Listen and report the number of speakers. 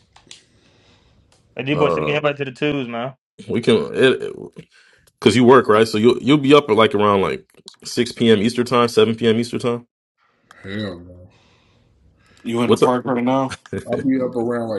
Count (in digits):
4